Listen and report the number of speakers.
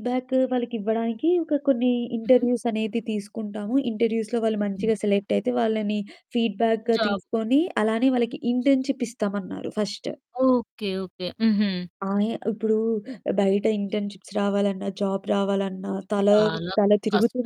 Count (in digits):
2